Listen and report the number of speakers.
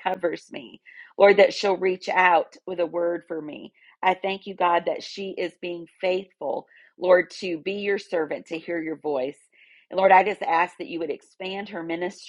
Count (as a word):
one